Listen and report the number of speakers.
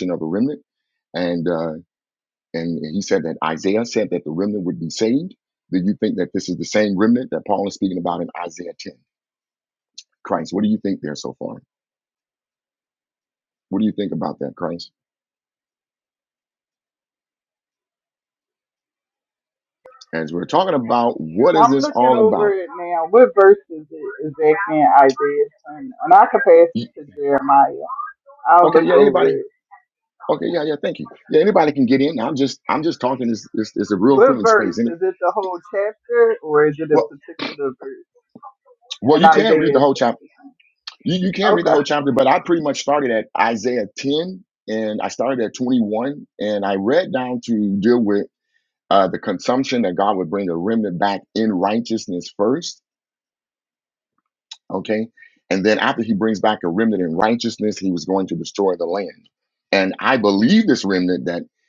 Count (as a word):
two